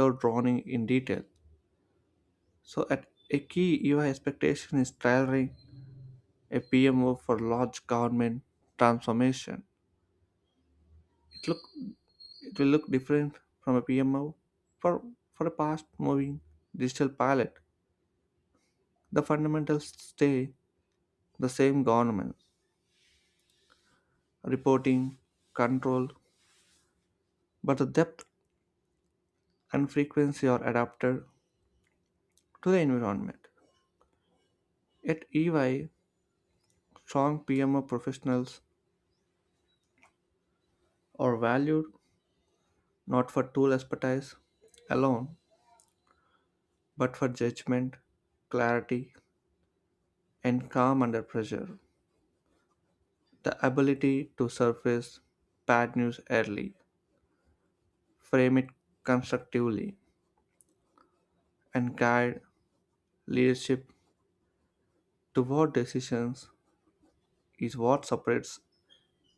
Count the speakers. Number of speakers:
one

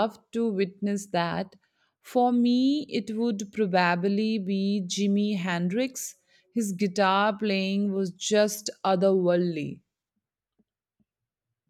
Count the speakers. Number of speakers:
one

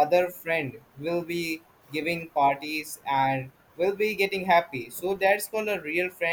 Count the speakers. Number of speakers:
one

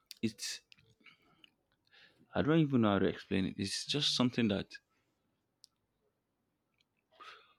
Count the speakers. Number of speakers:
one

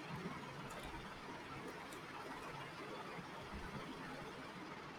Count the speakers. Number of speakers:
zero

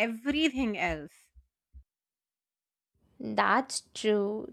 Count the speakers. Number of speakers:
two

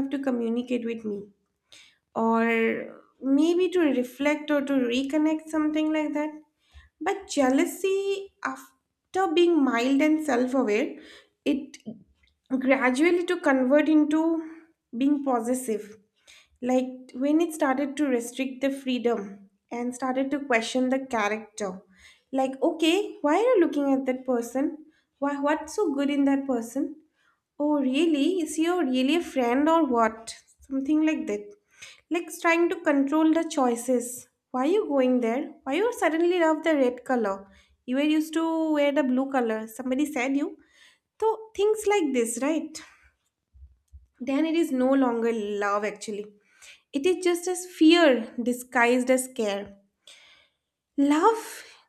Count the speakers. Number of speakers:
one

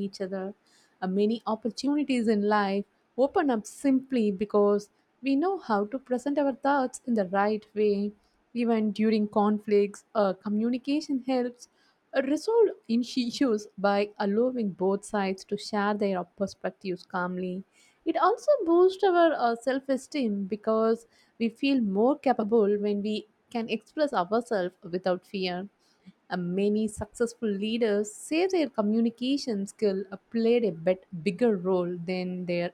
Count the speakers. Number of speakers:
one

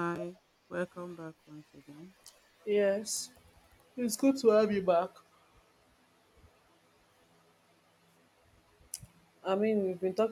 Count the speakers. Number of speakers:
two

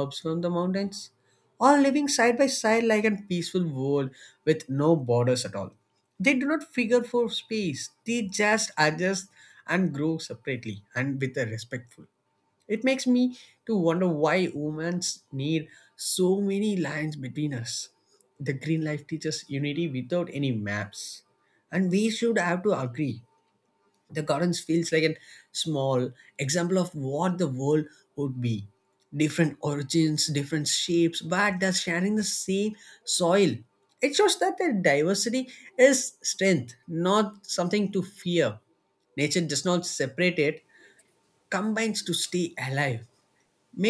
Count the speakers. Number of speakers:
one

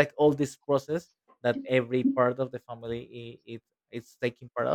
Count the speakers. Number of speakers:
one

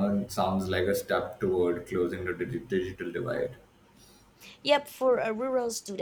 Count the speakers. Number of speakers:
two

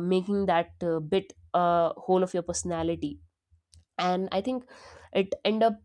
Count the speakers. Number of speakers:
one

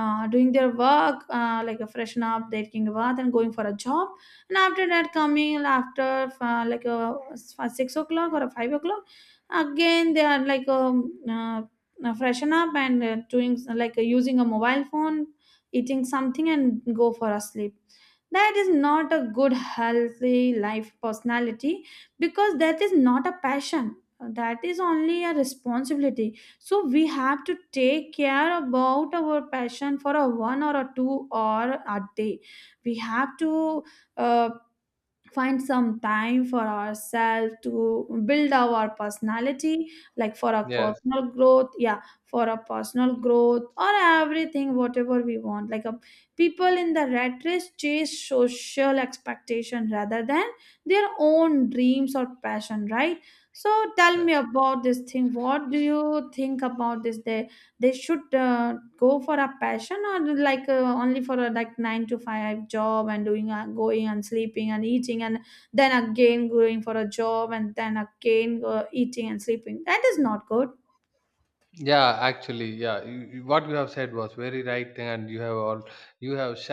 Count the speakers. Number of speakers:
two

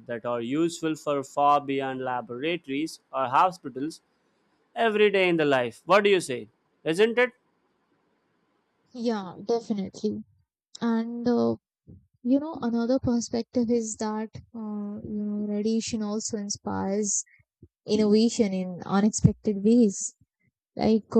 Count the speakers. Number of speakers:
two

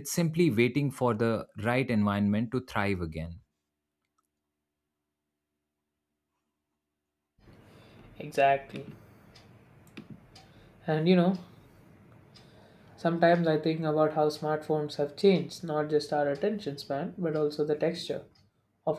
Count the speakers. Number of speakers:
two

